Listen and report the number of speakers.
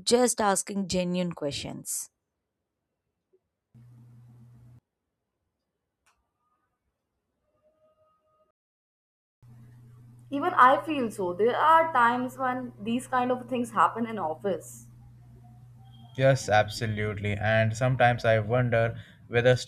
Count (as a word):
three